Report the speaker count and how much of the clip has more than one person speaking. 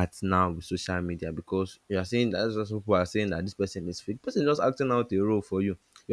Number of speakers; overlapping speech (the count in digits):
1, no overlap